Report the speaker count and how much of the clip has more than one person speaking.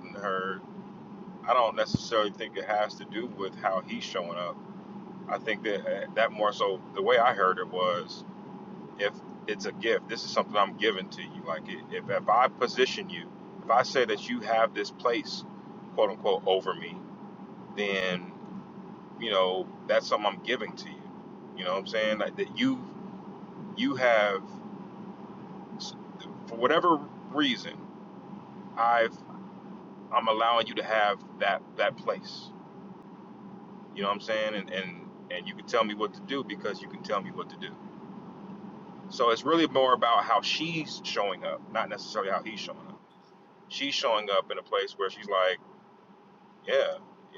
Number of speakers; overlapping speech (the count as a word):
one, no overlap